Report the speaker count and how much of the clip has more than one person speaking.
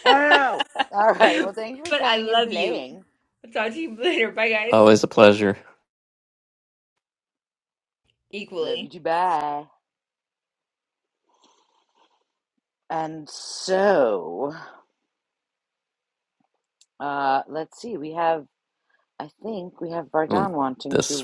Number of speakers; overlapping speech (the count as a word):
three, about 9%